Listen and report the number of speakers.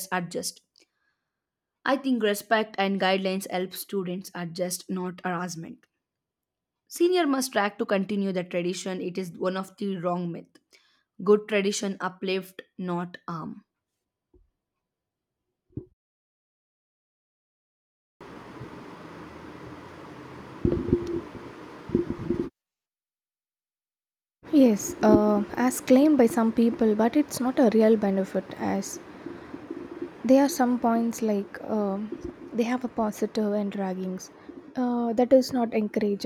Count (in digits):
2